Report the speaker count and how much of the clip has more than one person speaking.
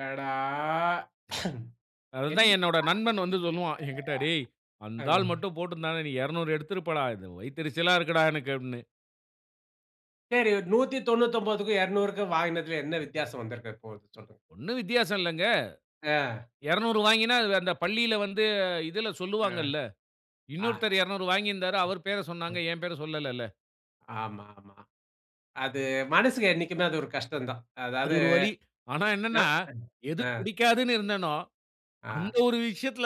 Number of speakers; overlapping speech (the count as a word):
two, about 4%